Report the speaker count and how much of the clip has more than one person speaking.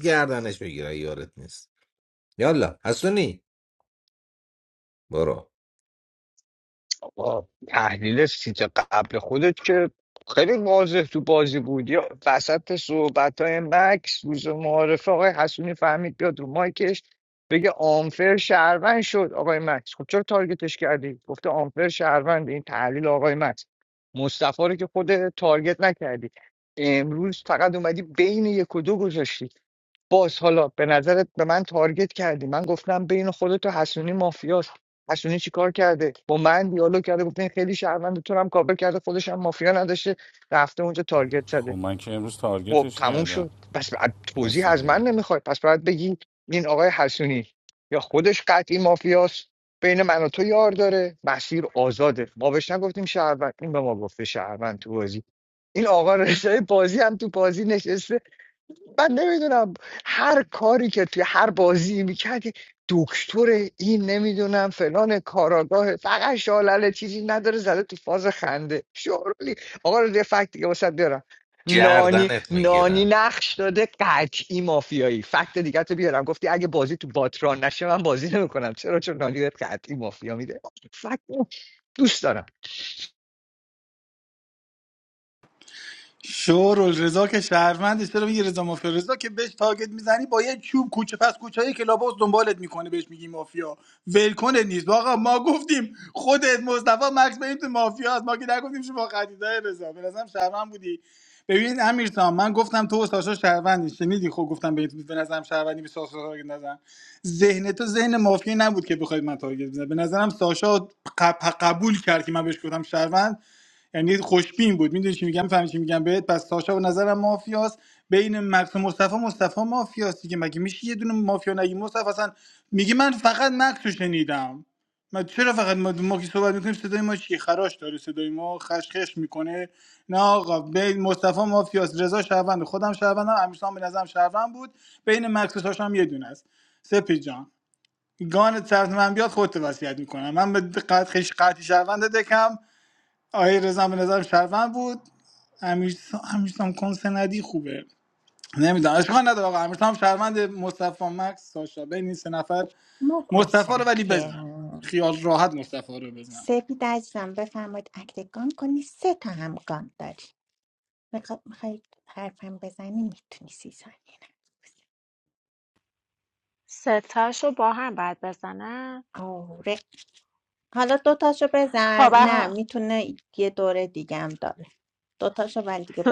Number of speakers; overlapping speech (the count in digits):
6, about 3%